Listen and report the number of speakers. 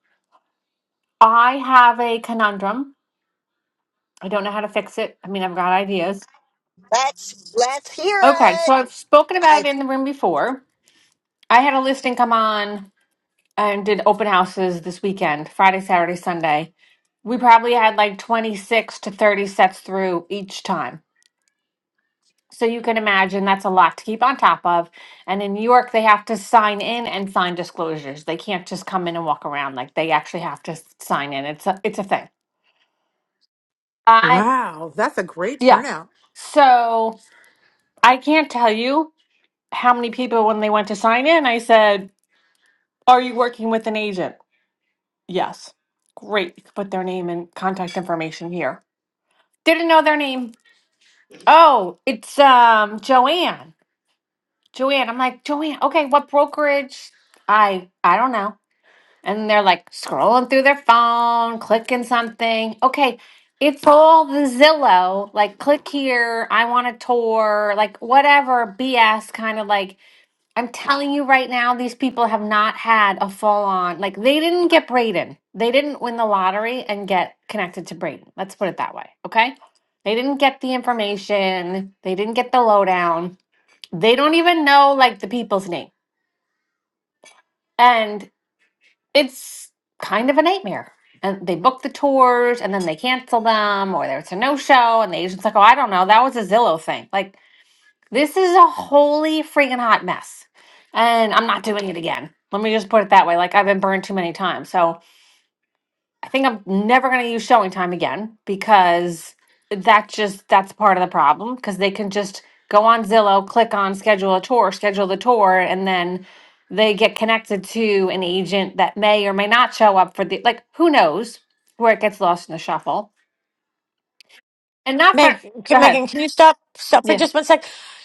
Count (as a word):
four